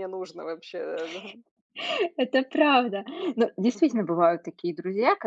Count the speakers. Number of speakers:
2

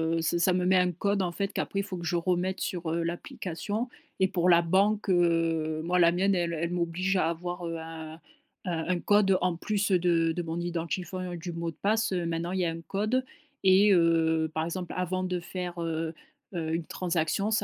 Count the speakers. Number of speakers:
1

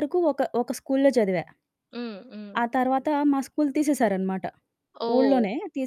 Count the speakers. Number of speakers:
2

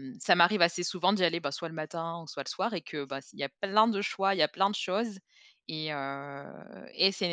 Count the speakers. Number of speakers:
1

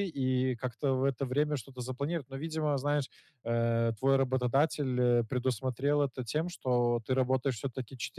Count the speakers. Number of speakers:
1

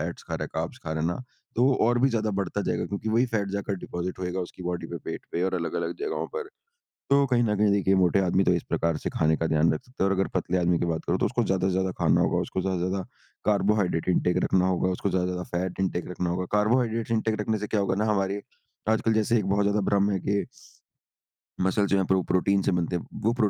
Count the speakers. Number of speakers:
1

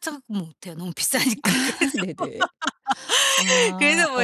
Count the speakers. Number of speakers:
2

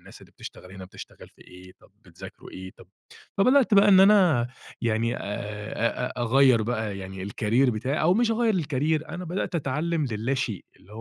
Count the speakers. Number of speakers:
1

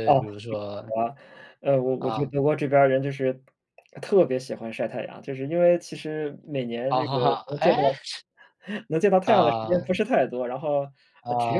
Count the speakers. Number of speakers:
2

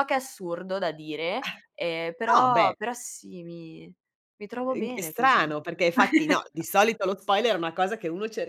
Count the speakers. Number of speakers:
2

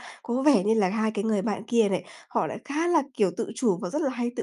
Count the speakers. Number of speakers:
1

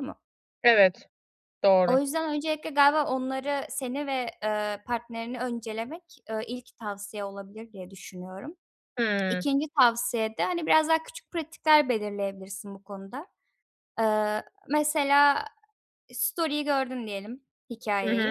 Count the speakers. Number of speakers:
2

